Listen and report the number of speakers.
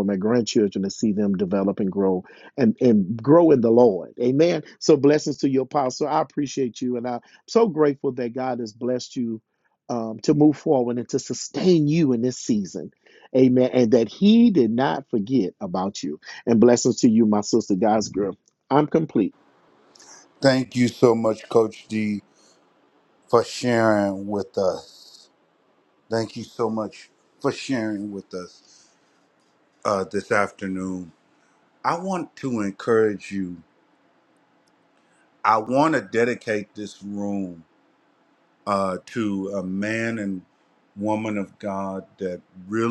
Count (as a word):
two